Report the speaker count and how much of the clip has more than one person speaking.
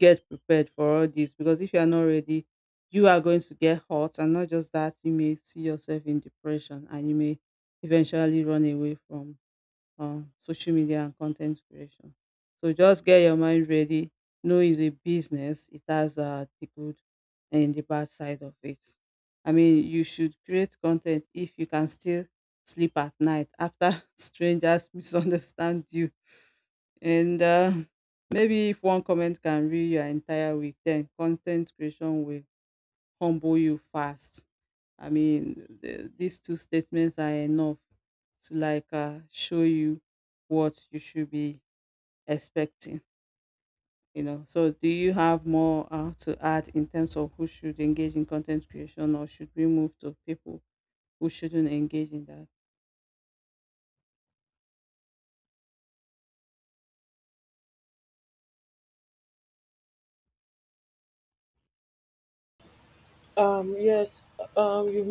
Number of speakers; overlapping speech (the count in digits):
2, no overlap